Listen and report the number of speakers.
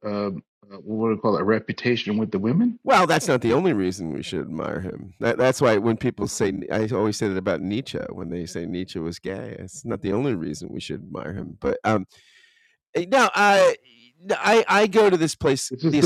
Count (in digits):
2